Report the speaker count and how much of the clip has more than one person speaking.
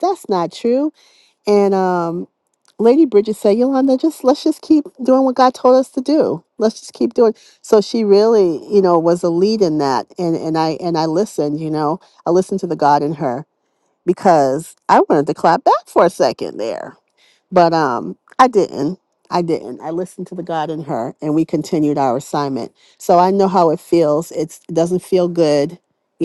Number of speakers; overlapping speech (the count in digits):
1, no overlap